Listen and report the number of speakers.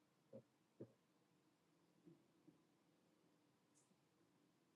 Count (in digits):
0